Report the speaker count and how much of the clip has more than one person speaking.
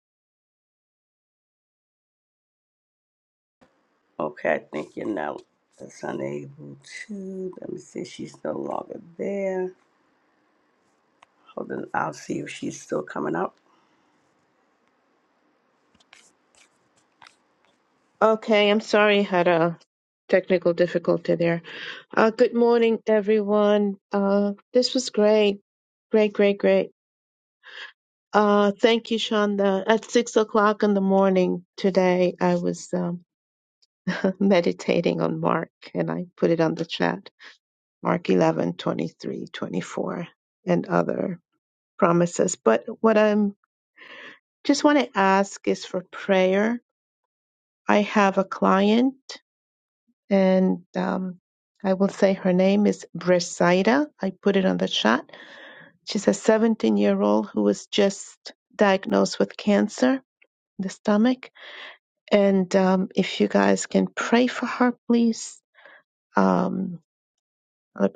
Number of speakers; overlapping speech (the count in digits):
2, no overlap